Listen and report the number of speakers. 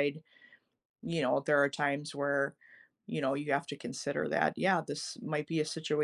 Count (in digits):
1